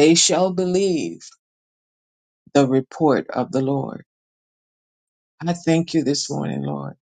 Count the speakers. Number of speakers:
one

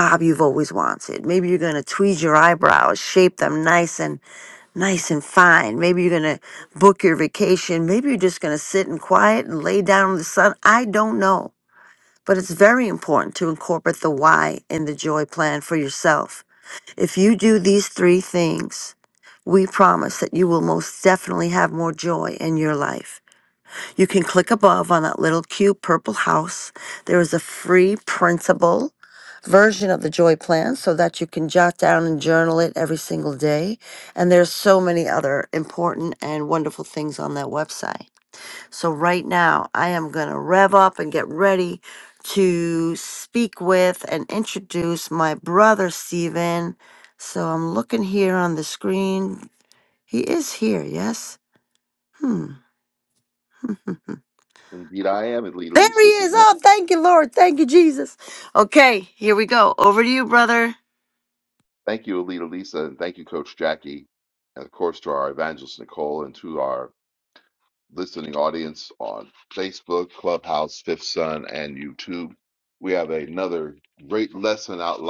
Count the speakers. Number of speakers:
two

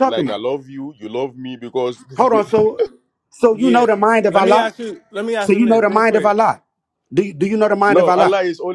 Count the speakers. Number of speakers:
three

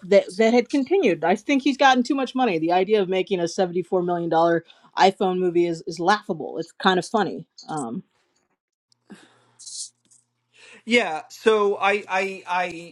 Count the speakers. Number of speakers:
two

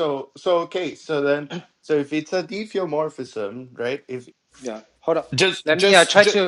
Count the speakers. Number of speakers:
two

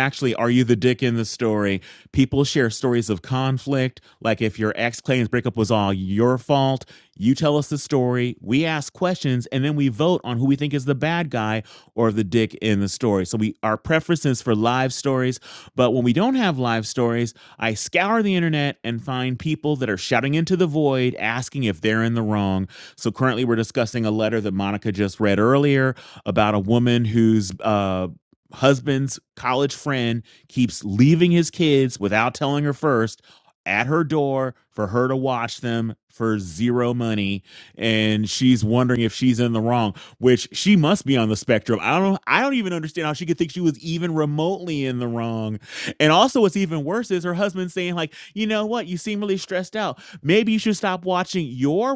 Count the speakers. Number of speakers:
one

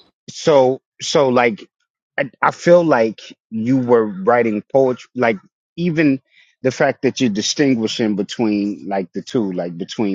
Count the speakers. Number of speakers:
one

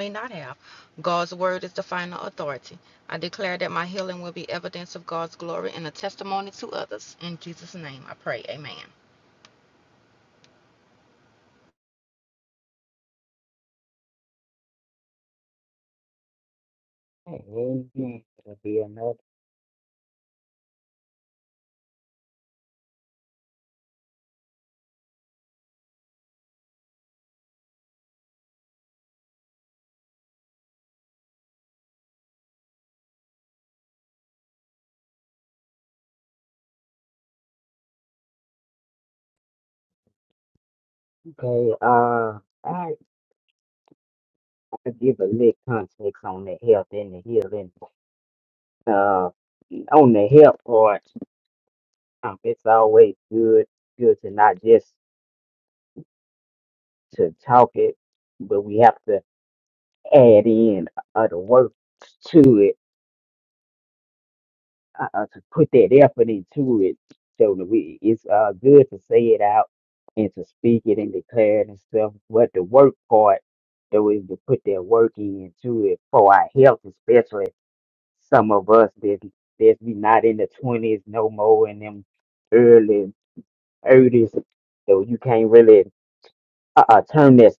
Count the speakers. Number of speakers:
two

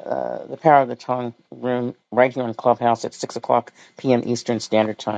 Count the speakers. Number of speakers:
one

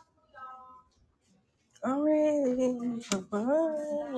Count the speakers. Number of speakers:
one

